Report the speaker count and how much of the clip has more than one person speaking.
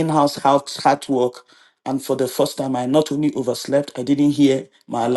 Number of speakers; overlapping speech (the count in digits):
1, no overlap